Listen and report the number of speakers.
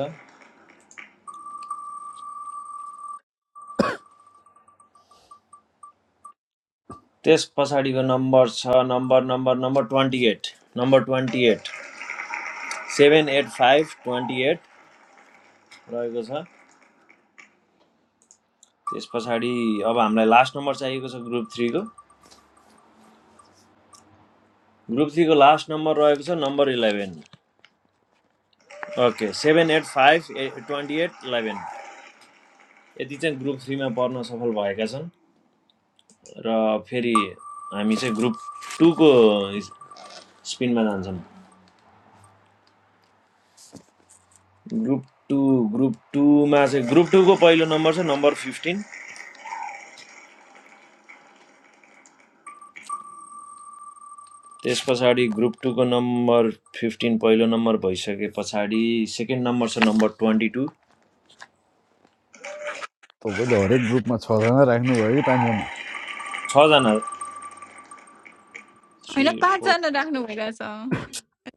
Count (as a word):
three